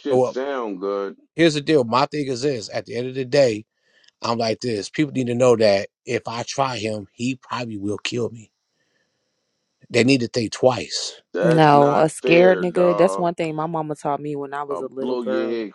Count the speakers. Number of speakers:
three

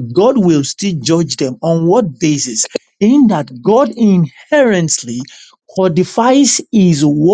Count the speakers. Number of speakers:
one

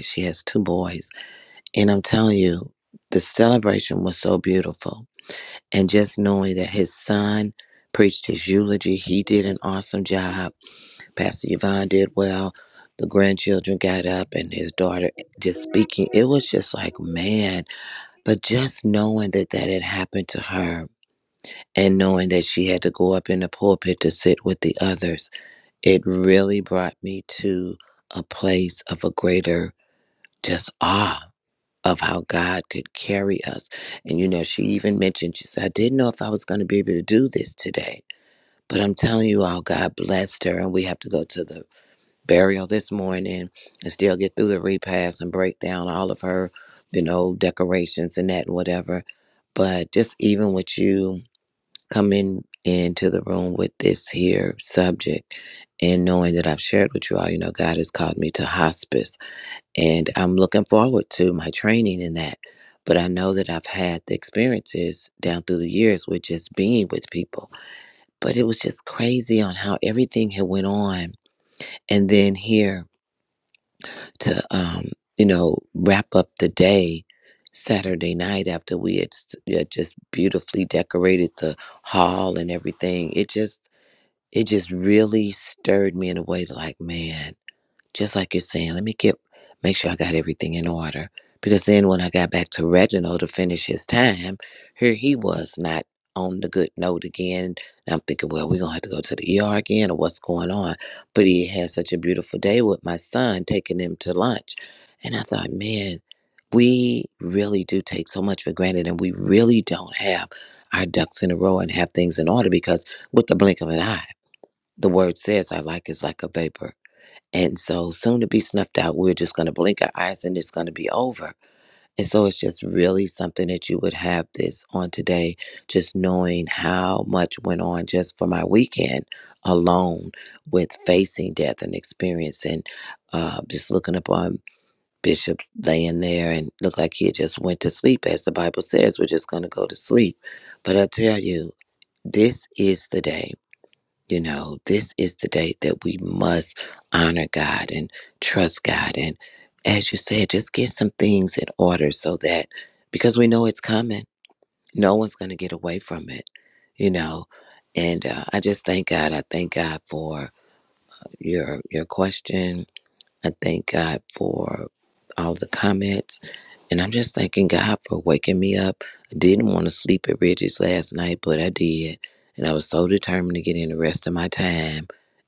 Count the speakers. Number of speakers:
one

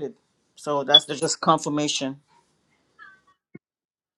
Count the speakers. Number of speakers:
one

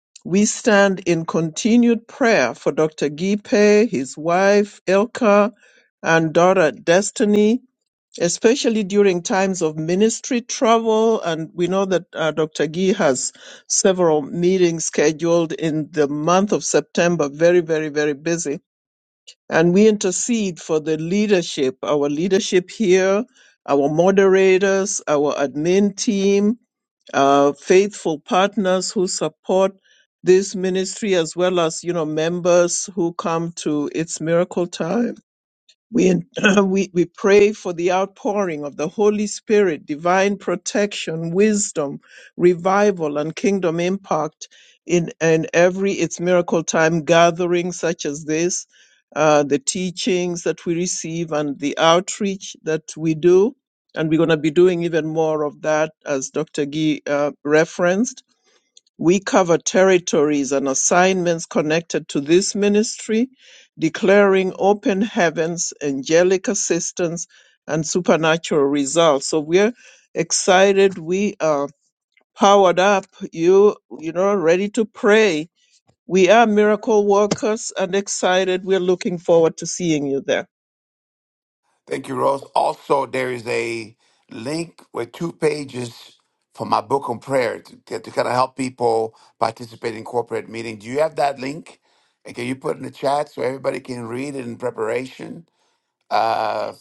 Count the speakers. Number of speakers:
two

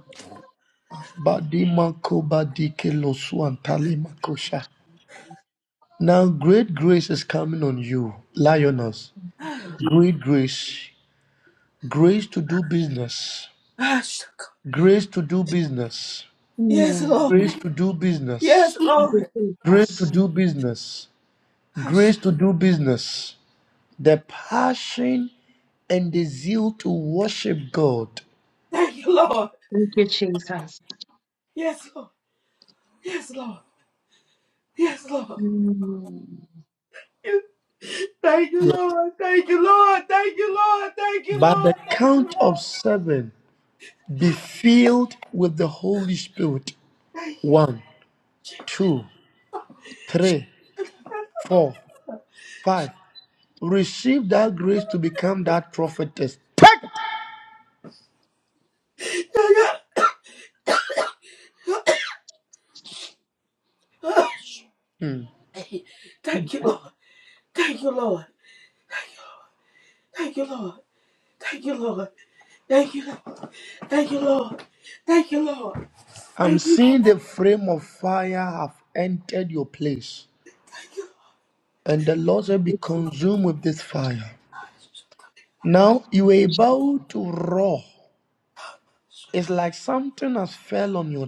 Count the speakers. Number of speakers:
three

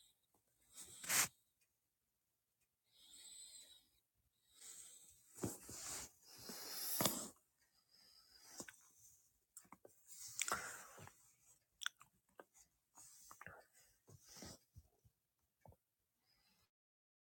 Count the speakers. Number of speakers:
zero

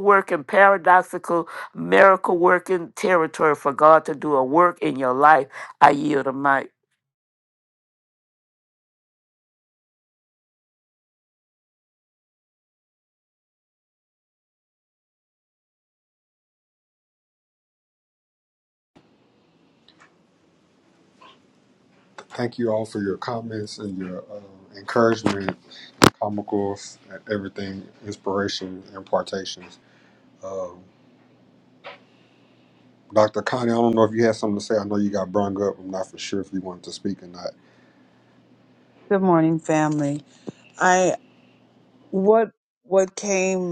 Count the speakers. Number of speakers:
three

